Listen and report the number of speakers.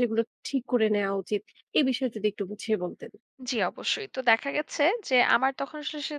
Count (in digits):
2